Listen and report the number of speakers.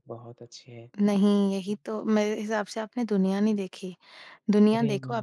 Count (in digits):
2